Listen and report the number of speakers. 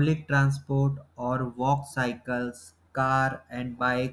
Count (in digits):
1